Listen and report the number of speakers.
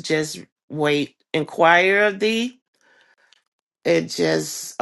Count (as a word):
one